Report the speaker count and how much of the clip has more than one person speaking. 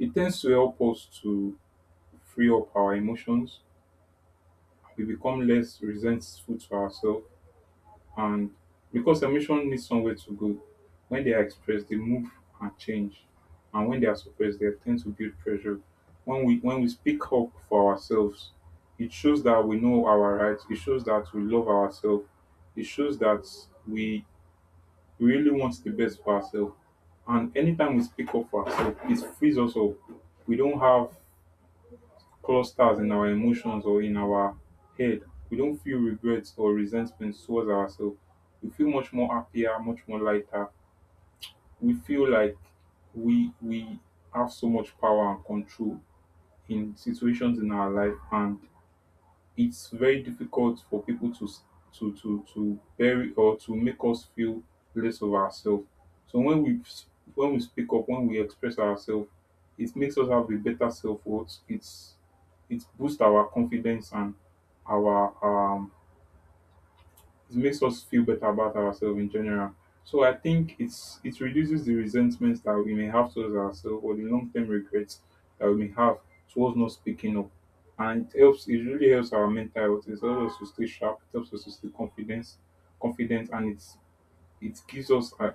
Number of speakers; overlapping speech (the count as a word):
one, no overlap